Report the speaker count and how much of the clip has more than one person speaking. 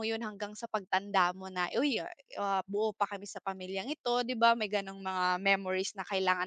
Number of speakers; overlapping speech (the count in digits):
1, no overlap